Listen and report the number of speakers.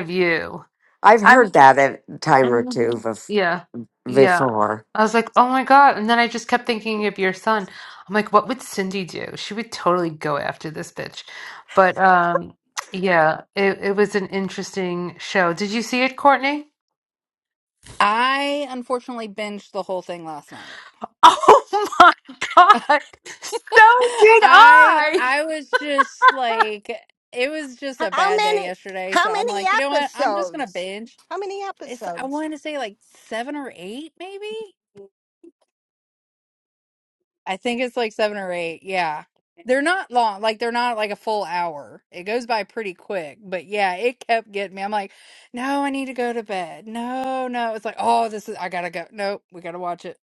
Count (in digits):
4